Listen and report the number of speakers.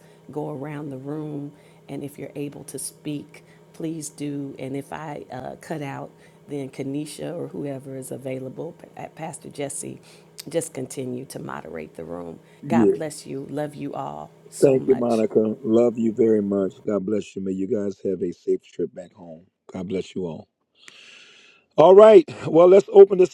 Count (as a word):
two